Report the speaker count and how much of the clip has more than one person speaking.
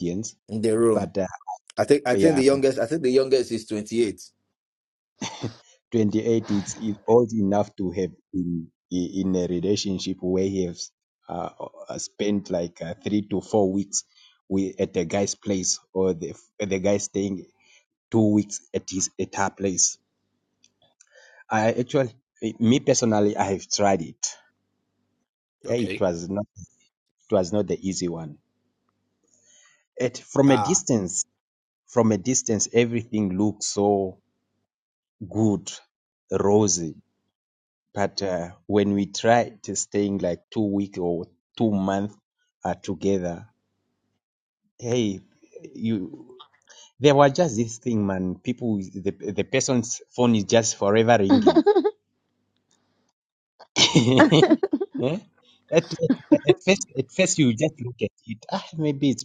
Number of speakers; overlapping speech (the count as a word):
two, about 2%